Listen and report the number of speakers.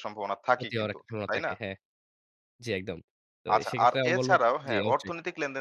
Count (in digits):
2